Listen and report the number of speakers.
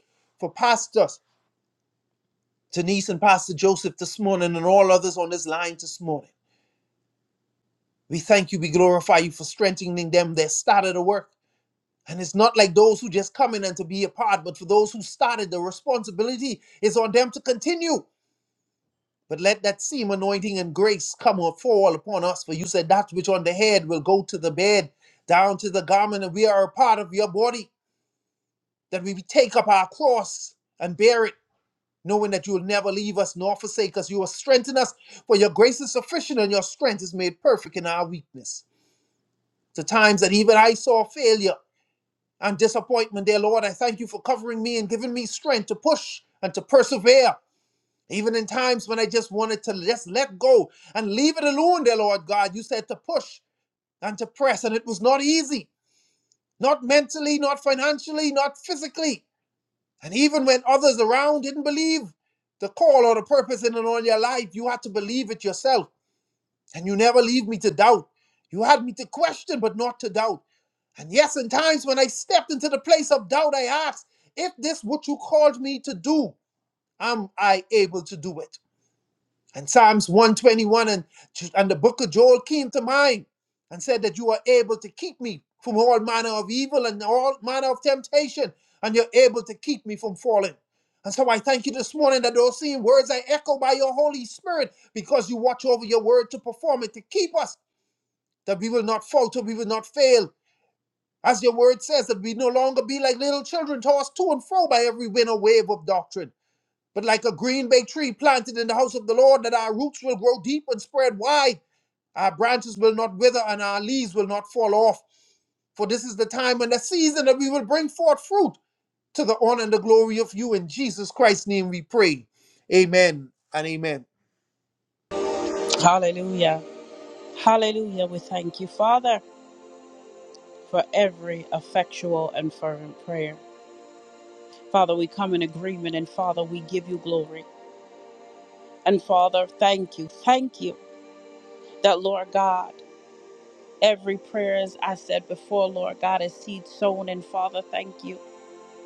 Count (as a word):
two